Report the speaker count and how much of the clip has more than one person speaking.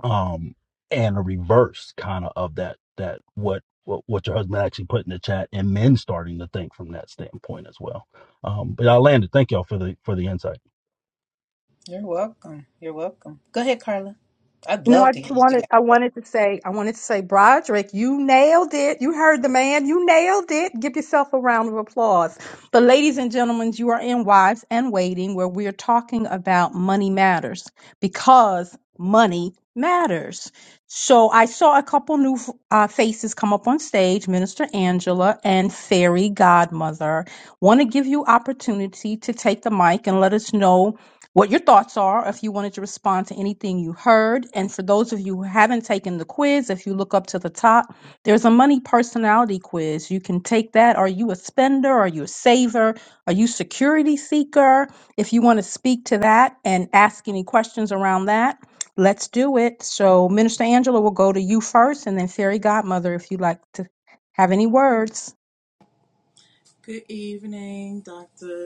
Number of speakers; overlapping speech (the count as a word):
four, about 1%